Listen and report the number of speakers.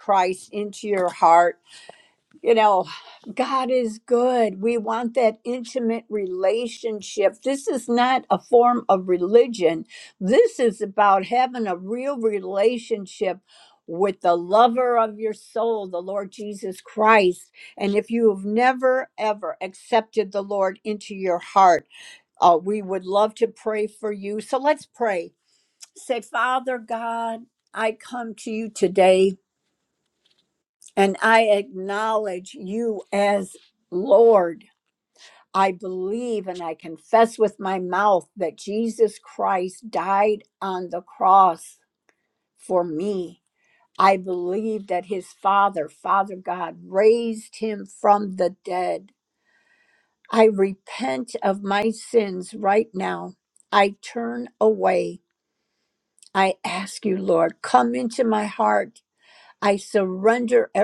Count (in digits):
1